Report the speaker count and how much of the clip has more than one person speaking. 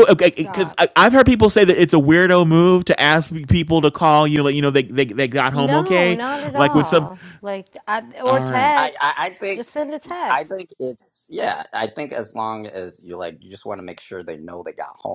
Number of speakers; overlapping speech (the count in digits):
3, about 18%